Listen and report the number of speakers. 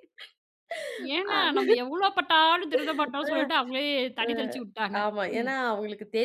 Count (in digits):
2